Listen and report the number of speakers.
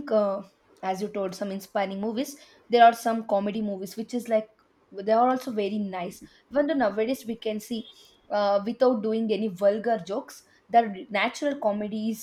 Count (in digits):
1